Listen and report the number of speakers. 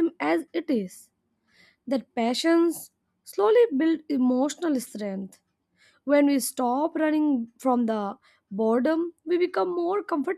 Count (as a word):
one